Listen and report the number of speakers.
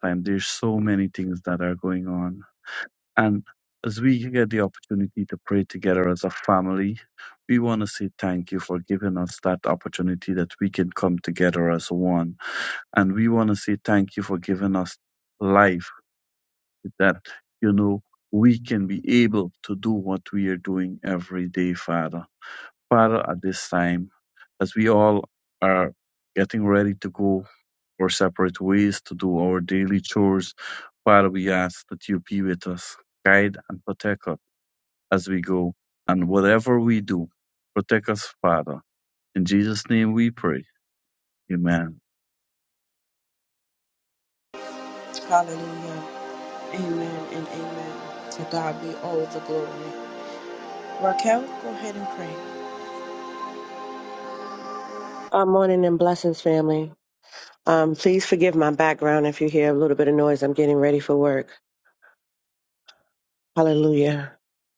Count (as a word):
three